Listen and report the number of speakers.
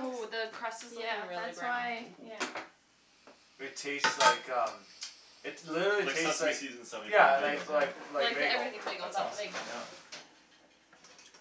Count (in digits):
4